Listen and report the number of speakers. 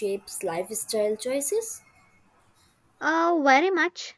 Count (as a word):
two